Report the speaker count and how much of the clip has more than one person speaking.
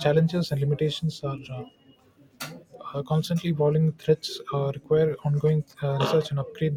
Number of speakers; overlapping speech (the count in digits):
1, no overlap